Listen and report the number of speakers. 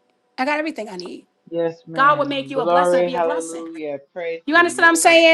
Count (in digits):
2